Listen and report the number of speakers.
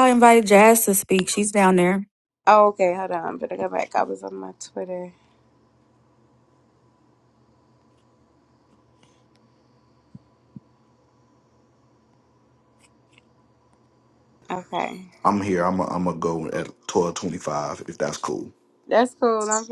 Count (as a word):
three